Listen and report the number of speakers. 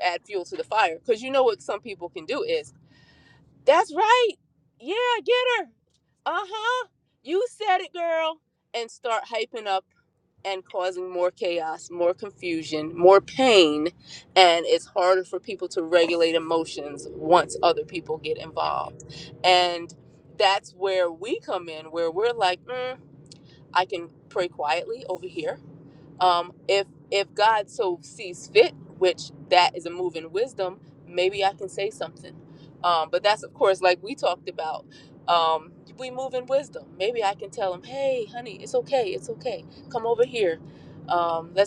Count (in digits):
1